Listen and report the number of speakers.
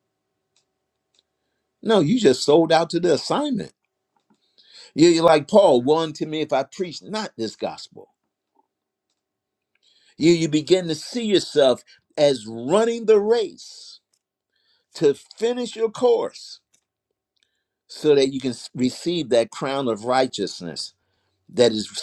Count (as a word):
one